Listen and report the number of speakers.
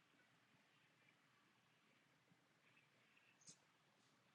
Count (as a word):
zero